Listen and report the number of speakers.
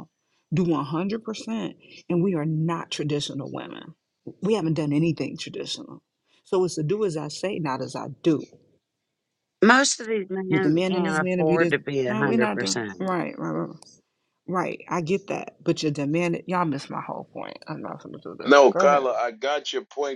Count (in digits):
3